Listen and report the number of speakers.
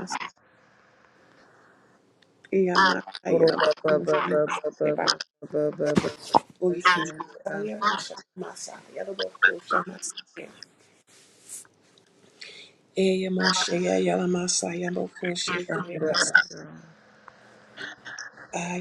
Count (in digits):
2